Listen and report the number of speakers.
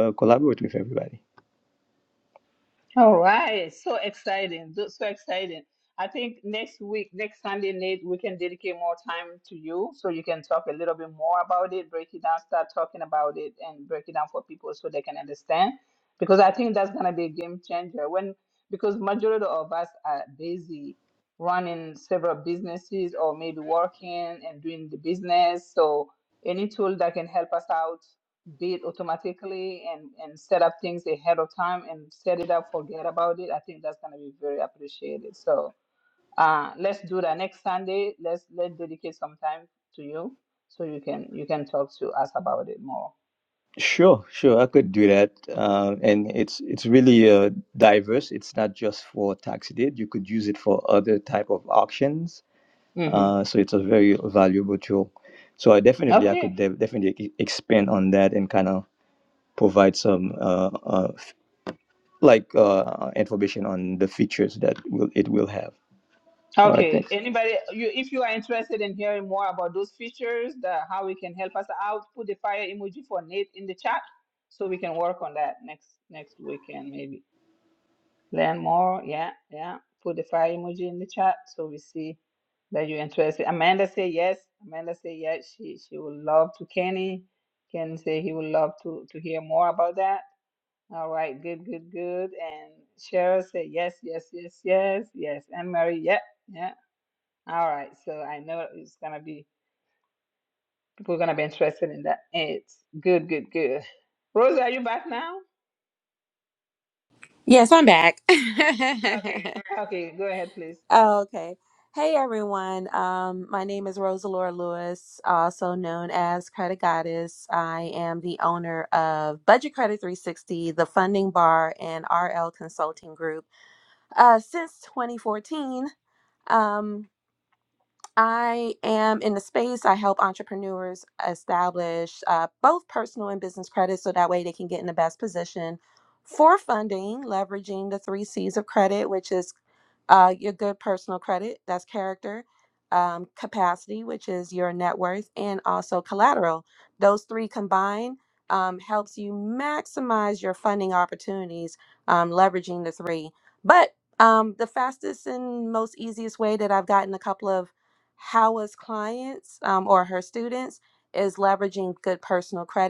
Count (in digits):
3